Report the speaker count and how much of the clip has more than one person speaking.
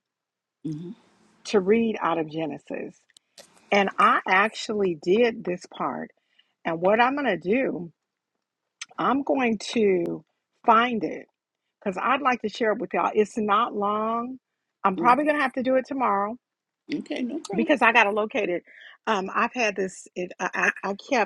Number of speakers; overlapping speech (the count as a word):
two, about 2%